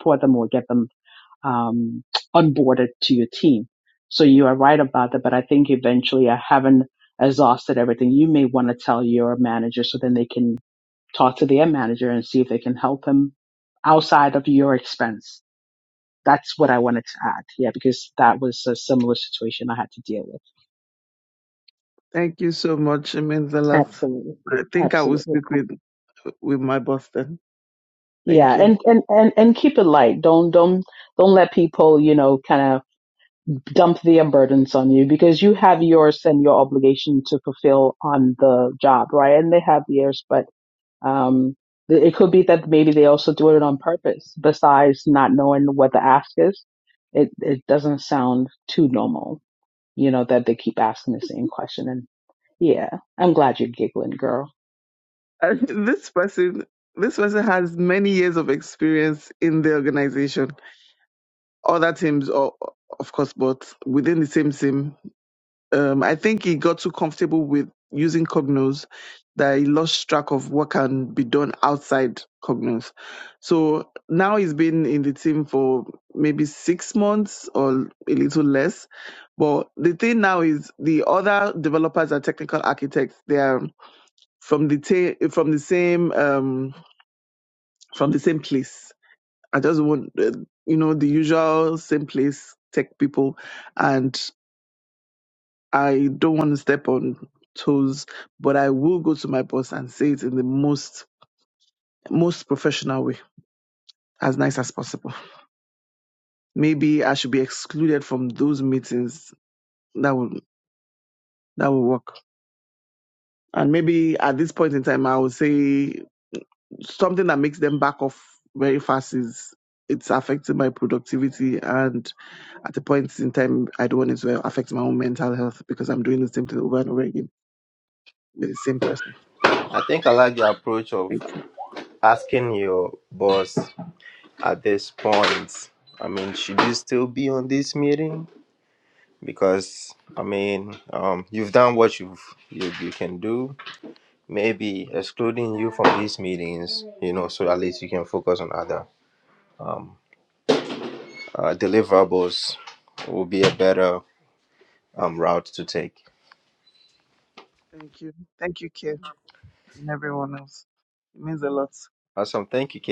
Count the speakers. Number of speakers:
three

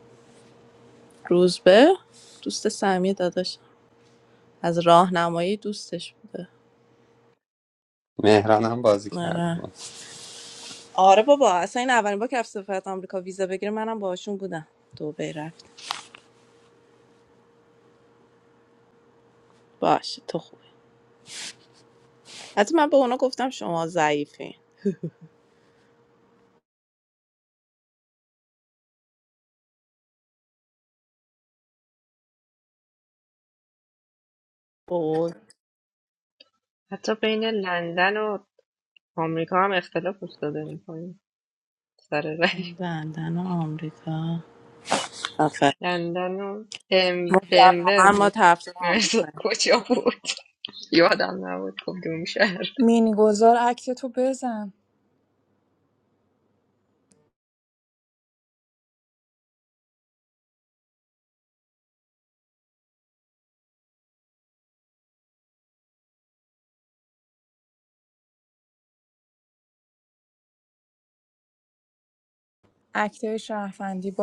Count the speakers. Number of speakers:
four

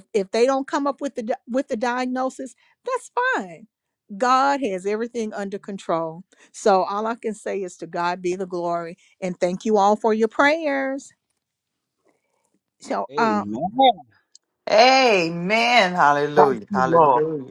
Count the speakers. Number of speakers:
three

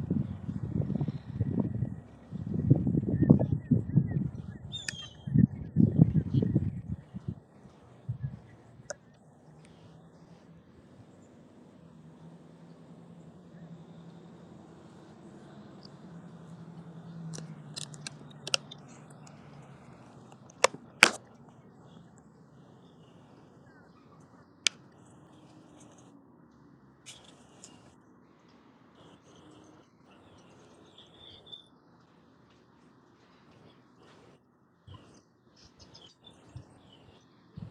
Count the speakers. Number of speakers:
zero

